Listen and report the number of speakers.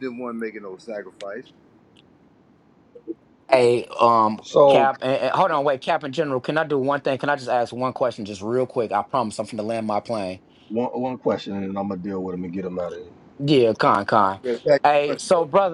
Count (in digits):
3